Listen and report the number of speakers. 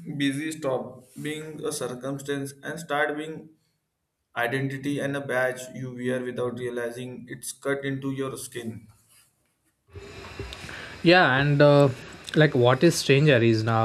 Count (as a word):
two